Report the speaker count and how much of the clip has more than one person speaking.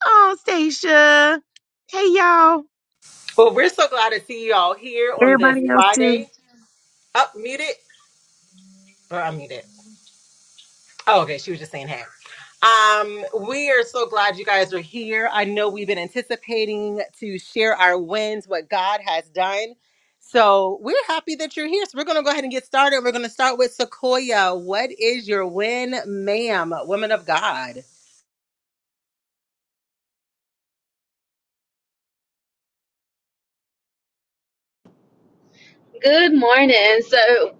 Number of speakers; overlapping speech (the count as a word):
three, about 3%